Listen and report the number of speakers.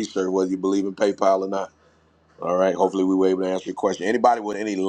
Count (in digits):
1